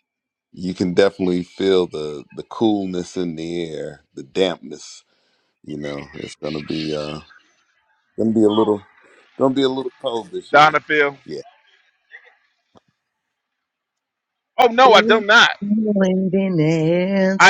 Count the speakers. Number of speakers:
three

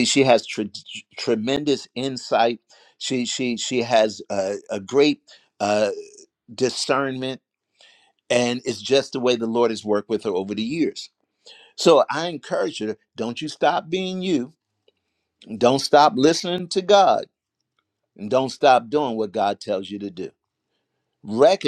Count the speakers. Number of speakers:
one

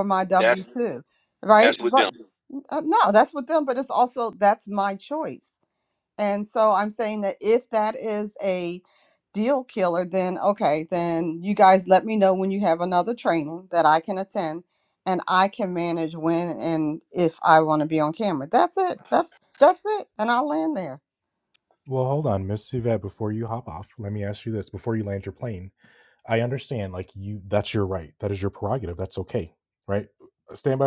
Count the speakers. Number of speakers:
two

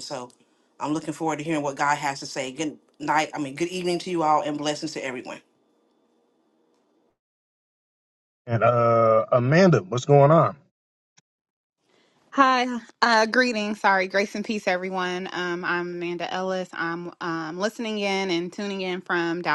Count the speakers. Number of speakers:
three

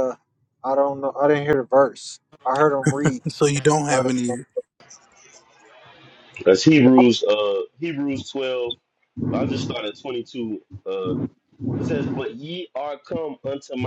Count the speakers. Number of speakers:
three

